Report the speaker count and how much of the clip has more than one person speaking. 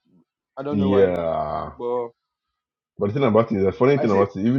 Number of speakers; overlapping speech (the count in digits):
2, about 16%